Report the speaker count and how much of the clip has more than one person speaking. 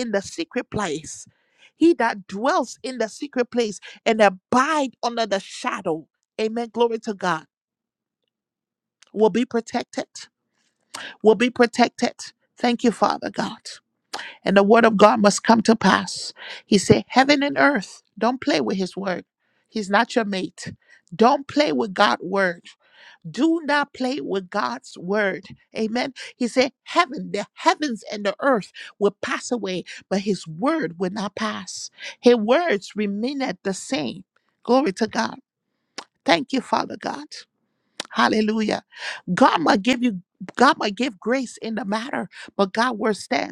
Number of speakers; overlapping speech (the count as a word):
one, no overlap